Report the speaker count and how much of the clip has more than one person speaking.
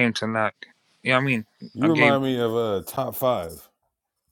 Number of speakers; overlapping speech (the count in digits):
2, about 8%